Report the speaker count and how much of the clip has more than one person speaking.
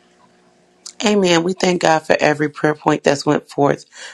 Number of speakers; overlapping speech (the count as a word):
one, no overlap